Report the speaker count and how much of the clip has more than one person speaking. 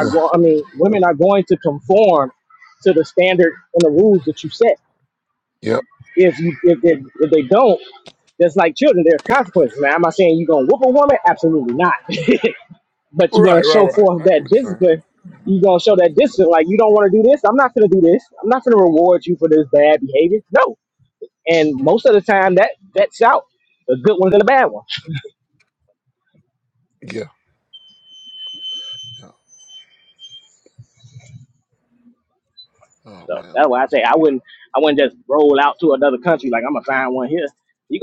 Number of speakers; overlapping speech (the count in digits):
2, about 5%